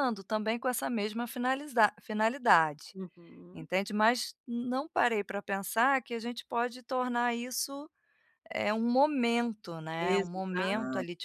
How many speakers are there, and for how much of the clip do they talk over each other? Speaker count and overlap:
two, about 10%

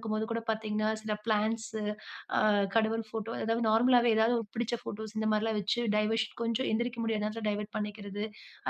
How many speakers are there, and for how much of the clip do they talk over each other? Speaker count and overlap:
one, no overlap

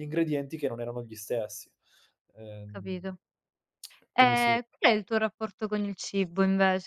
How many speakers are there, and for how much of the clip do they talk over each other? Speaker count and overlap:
two, about 6%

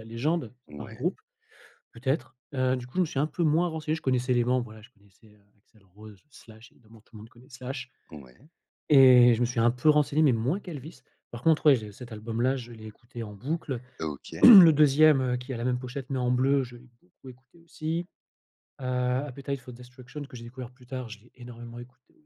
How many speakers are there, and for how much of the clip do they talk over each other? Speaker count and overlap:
two, about 2%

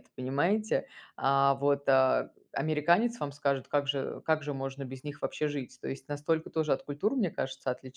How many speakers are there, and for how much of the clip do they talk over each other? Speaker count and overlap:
one, no overlap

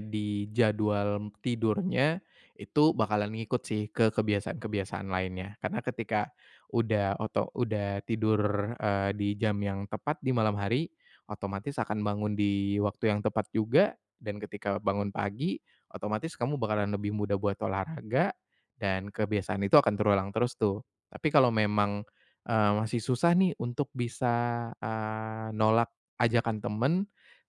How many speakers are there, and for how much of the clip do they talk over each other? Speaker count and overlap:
one, no overlap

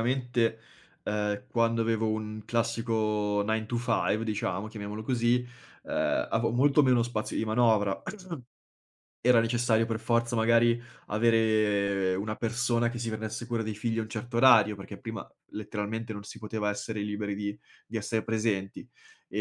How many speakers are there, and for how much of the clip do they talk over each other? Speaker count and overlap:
one, no overlap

